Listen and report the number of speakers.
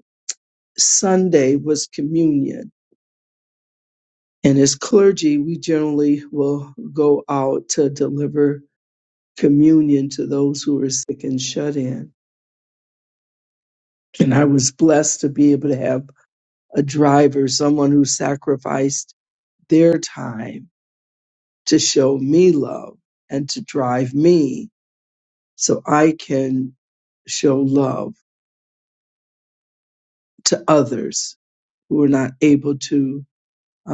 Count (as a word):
one